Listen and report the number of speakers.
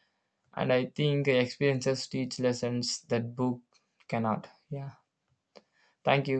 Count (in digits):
1